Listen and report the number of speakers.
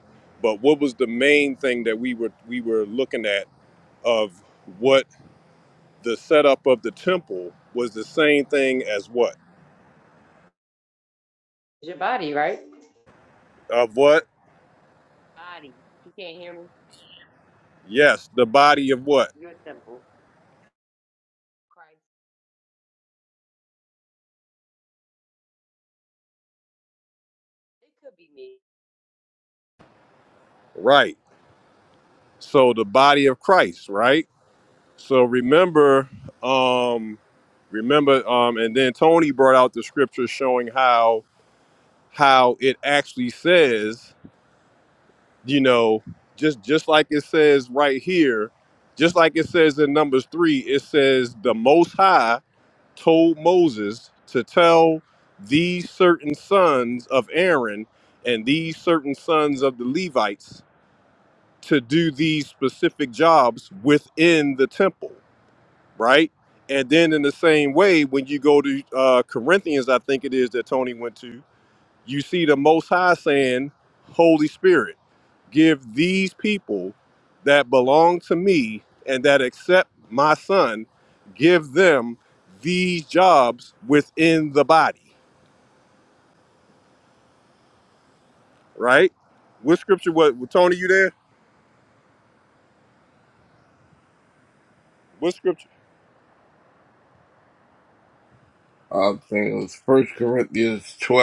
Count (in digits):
3